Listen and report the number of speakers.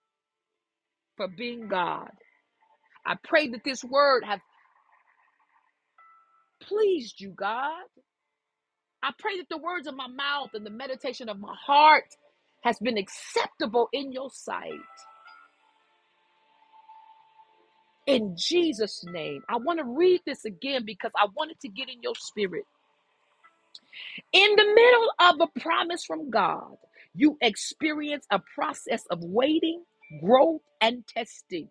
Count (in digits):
1